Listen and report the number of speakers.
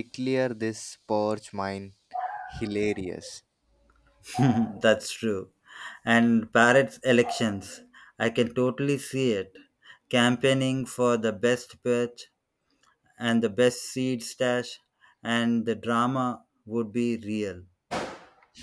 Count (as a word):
two